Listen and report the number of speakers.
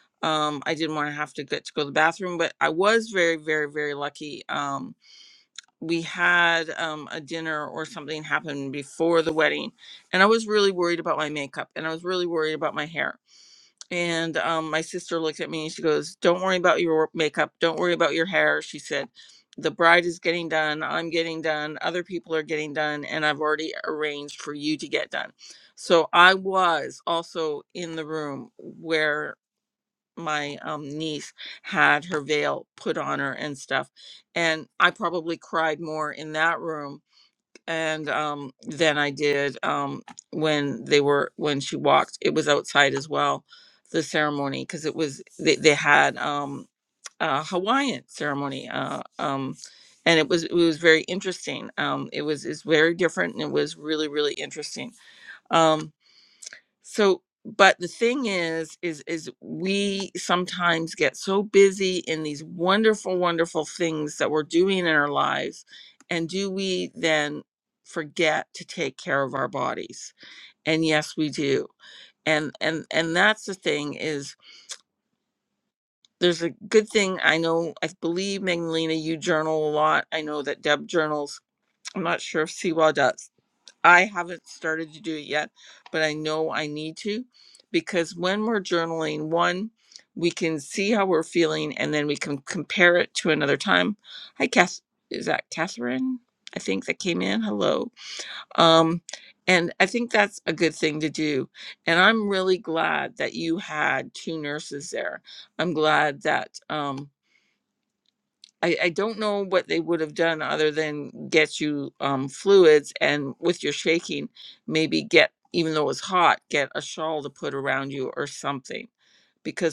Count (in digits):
1